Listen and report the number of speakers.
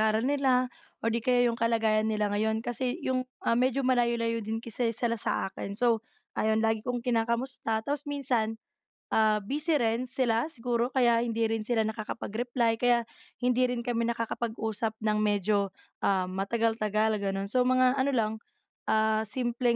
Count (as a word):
one